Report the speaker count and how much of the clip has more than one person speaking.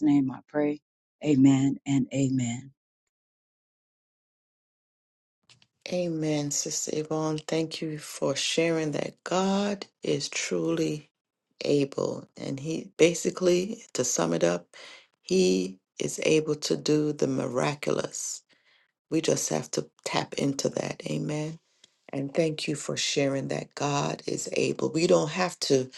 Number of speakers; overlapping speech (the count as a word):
two, no overlap